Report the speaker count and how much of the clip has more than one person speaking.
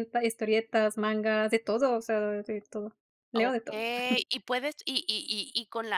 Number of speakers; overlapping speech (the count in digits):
2, about 7%